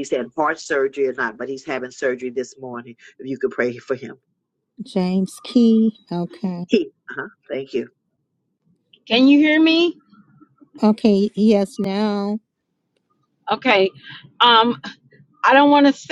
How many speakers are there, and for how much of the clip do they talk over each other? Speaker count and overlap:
3, no overlap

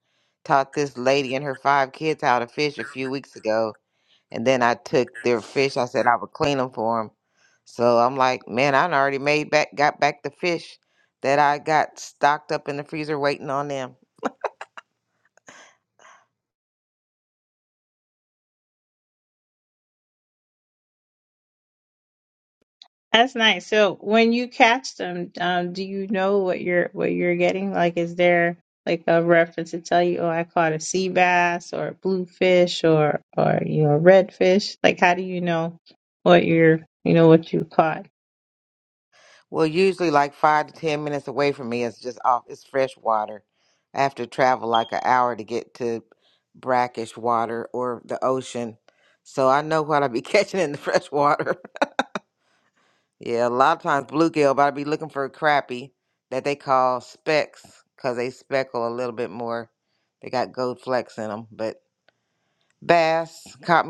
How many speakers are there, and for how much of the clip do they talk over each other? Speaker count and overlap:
2, no overlap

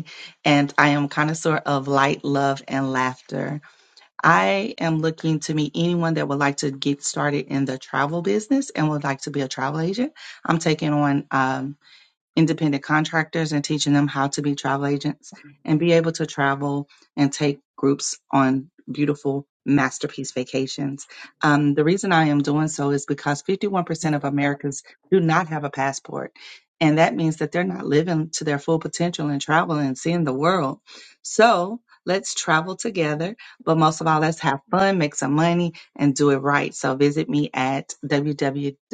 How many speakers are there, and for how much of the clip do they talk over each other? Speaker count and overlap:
1, no overlap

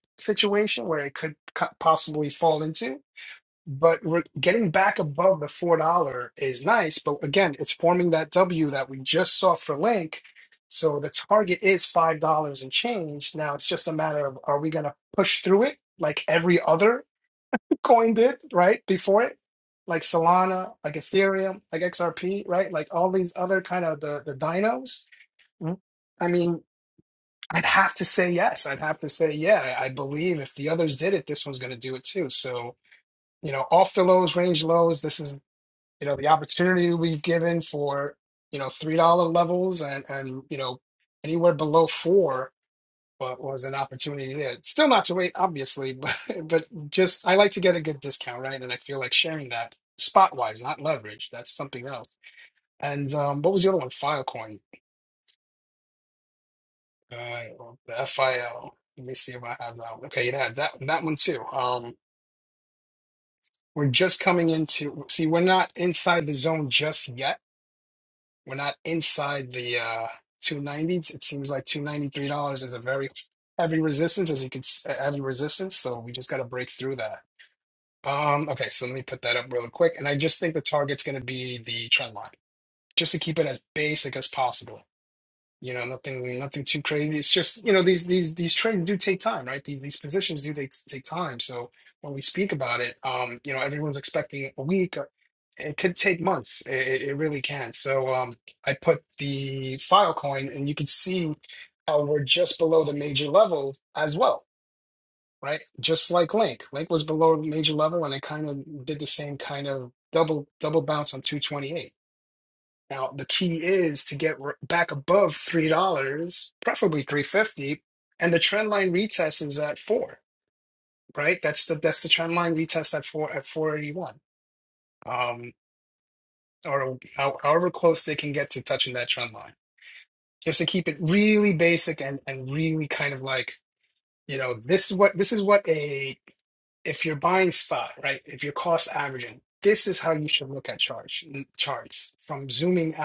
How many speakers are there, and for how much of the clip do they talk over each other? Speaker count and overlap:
1, no overlap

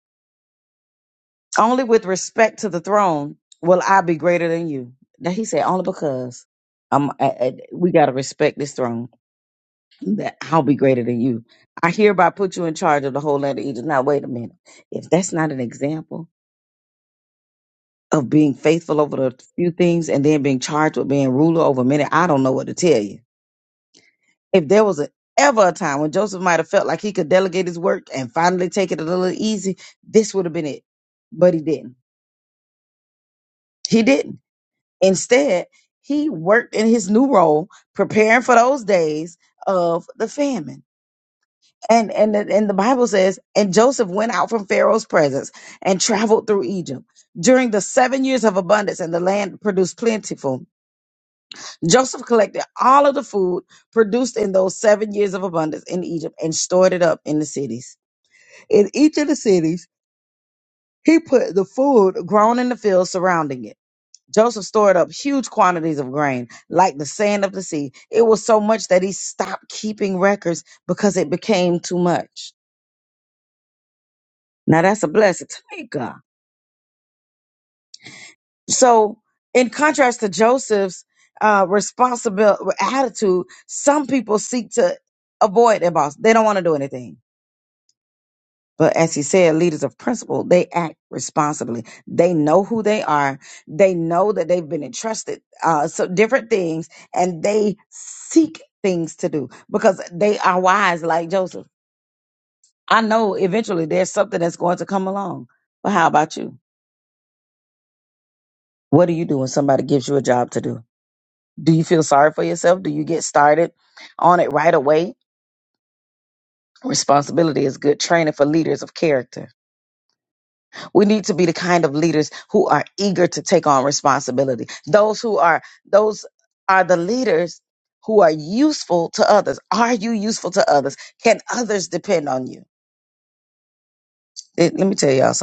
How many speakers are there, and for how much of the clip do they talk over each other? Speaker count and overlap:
1, no overlap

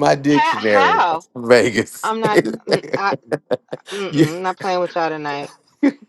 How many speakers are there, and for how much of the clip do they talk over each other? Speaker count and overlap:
2, about 15%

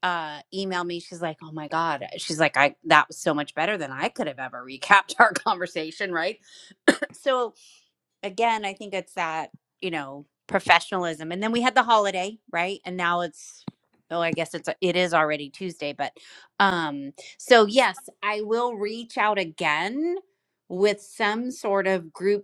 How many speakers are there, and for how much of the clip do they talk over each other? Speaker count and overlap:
1, no overlap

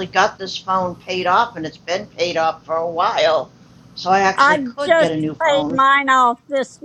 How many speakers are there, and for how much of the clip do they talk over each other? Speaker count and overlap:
2, about 16%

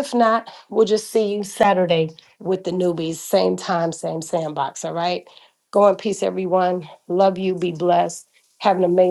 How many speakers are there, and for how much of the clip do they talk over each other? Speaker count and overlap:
1, no overlap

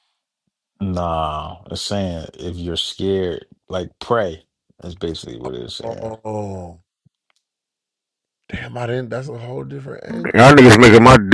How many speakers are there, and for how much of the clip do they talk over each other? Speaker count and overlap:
3, about 6%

